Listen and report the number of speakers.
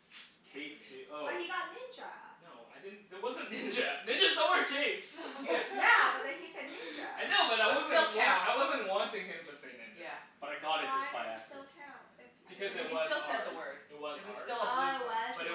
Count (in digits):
4